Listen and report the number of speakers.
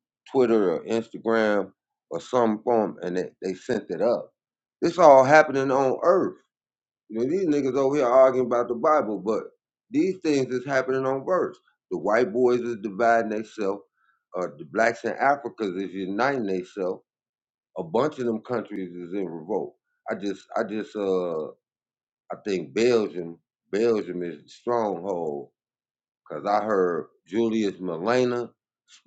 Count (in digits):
1